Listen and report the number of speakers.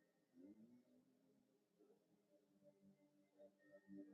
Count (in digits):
0